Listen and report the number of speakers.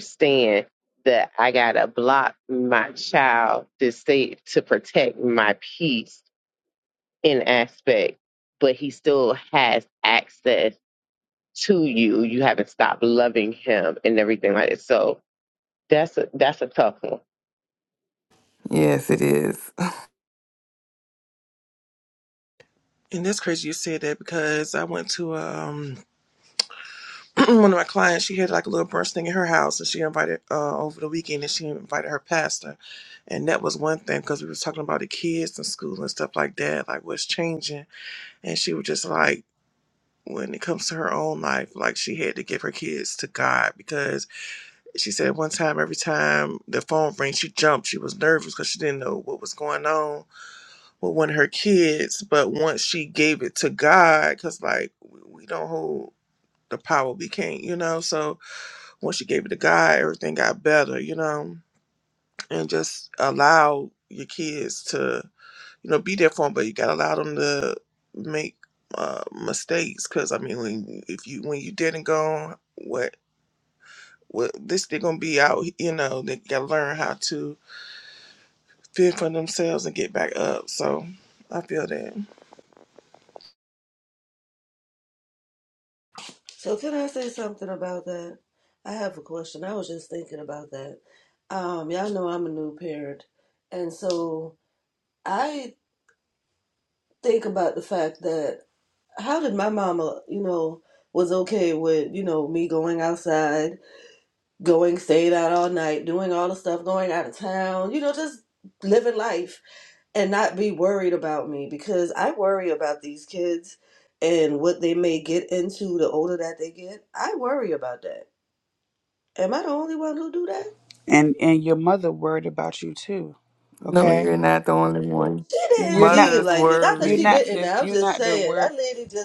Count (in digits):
5